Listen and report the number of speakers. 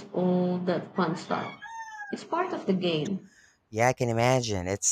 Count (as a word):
two